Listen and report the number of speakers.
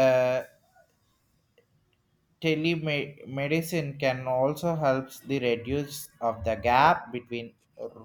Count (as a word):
one